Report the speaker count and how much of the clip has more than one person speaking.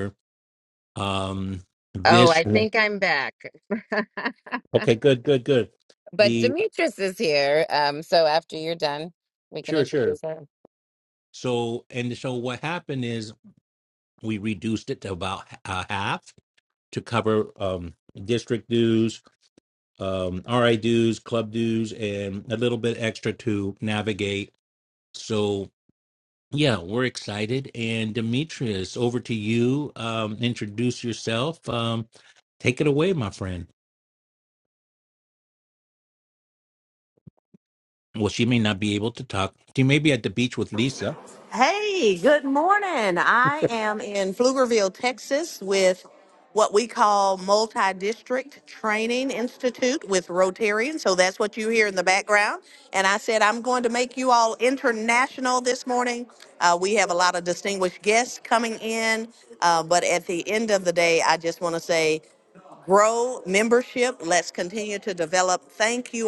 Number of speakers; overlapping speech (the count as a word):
three, about 2%